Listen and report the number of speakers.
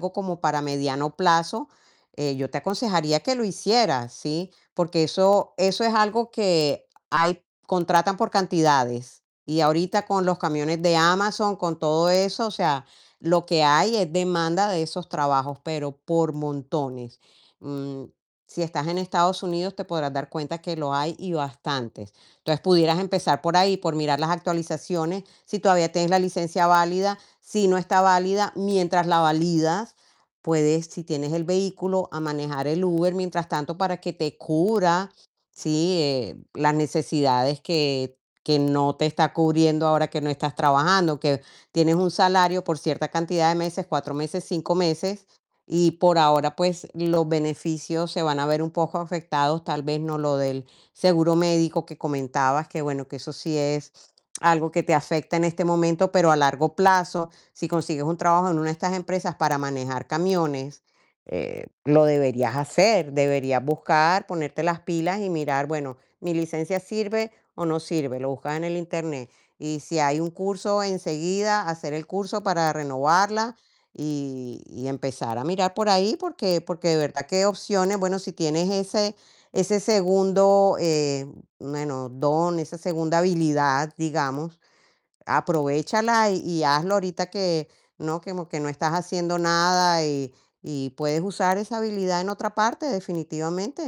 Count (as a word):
one